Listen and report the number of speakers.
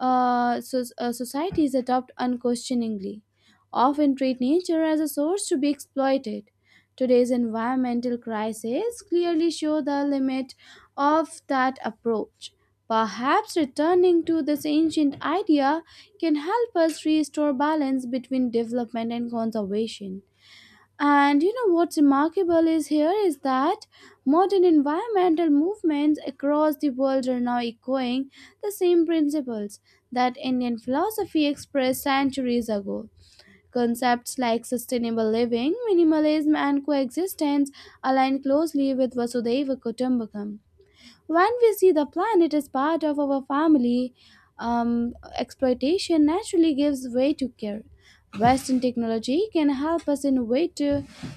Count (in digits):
1